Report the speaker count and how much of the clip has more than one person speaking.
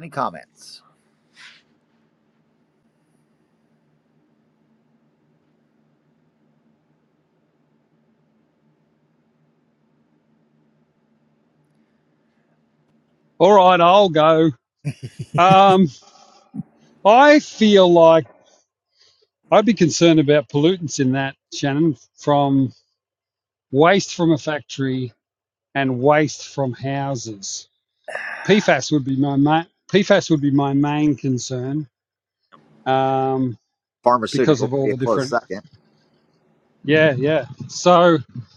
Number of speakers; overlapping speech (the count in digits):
2, about 3%